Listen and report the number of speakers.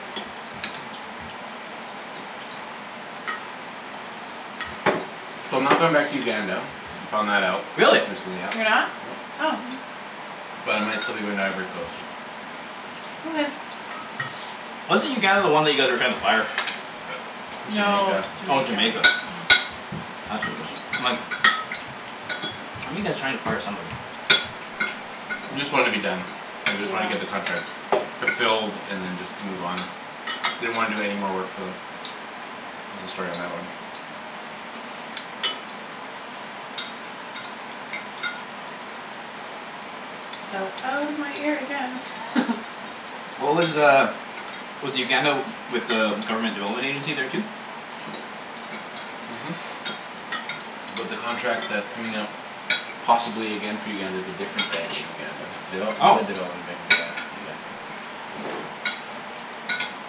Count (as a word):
three